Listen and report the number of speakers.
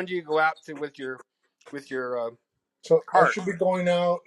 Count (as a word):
two